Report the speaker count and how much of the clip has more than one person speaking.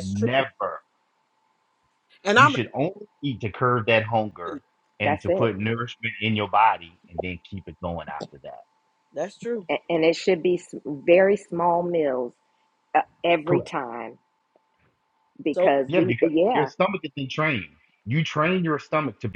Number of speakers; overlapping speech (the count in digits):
3, about 11%